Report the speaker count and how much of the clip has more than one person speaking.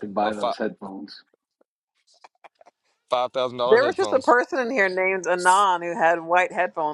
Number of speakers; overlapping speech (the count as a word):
three, about 13%